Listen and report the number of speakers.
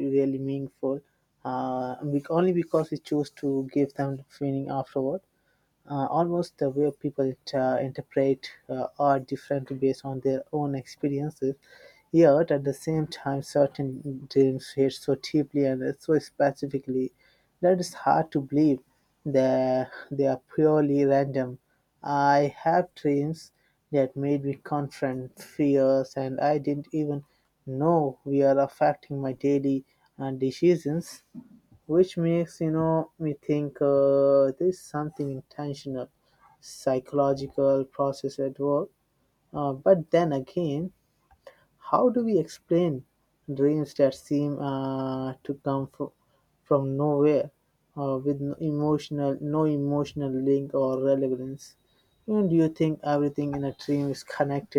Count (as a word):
one